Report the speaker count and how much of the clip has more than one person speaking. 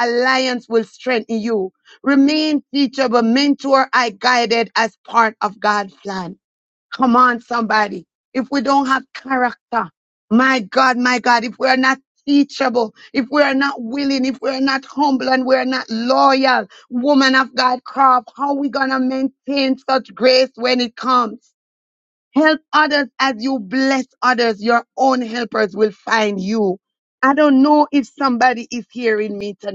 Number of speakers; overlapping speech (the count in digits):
1, no overlap